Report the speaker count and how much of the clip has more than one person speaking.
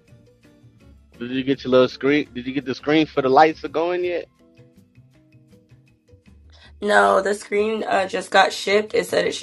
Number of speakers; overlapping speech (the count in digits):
2, no overlap